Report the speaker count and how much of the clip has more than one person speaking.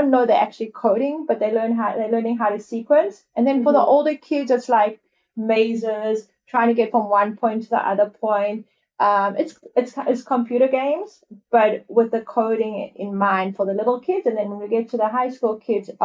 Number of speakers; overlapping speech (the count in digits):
1, no overlap